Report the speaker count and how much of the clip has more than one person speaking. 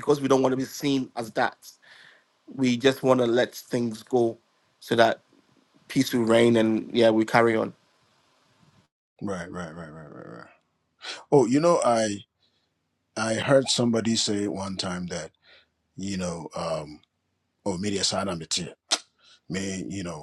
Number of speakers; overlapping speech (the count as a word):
two, no overlap